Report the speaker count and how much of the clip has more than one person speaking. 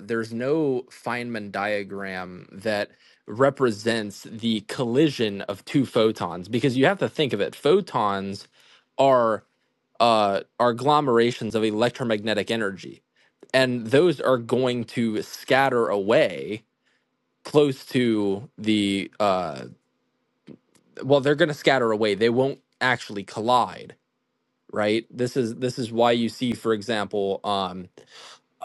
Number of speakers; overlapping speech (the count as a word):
one, no overlap